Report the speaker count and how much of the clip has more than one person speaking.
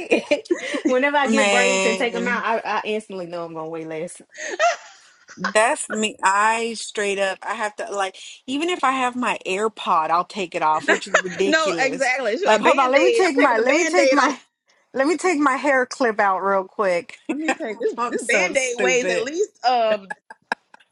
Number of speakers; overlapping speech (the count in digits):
3, about 23%